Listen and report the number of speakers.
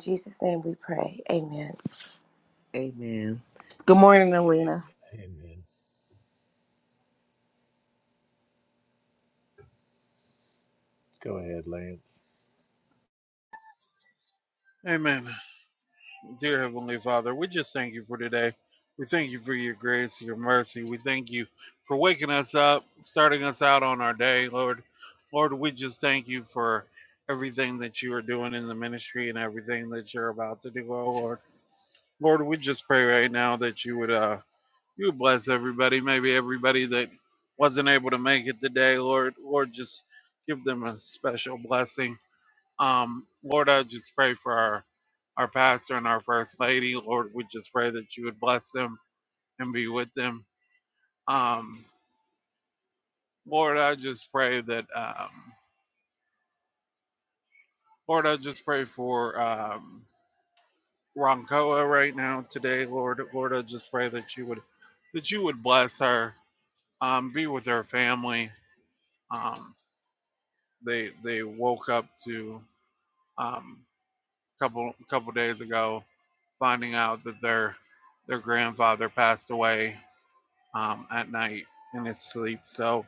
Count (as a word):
four